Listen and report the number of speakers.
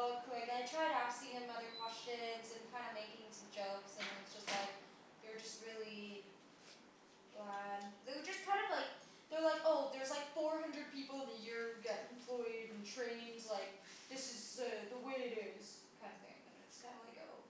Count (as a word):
one